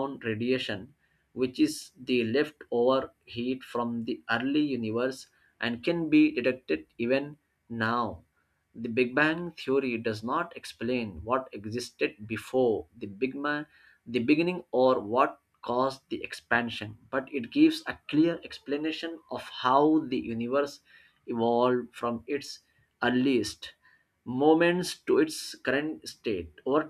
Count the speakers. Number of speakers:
one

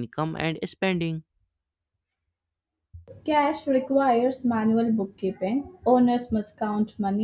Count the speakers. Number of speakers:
two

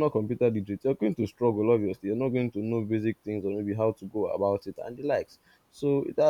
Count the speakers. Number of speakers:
one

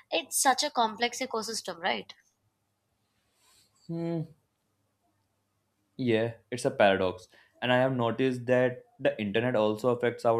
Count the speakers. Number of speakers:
two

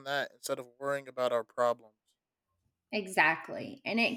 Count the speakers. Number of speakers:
two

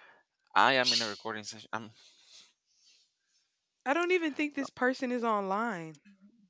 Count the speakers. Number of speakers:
two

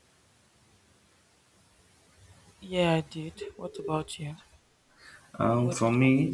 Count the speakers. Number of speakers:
two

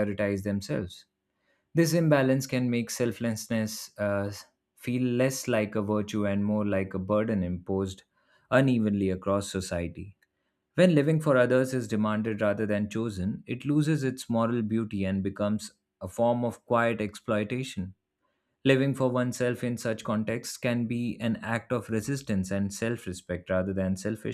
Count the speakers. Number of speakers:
one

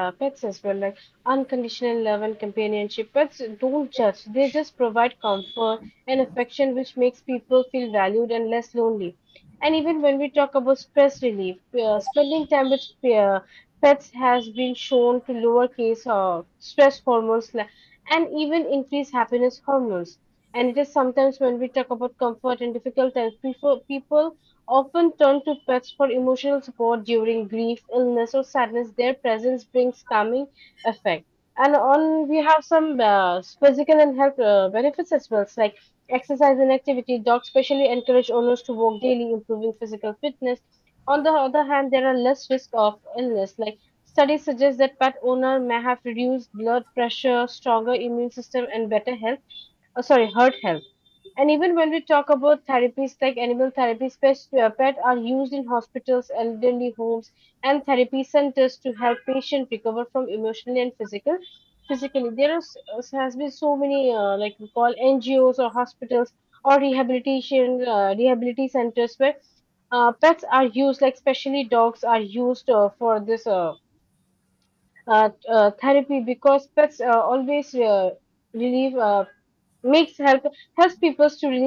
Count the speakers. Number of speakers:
one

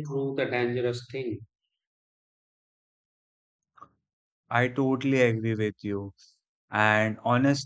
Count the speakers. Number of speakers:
two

